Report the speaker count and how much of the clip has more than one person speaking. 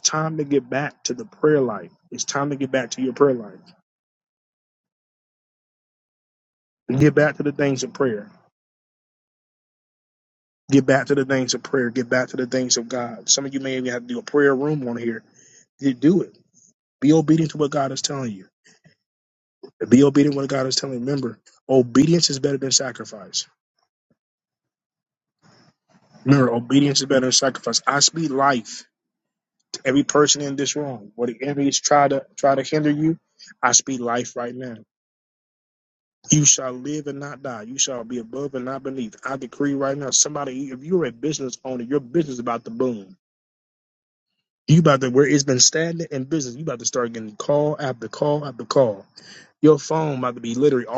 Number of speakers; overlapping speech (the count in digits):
1, no overlap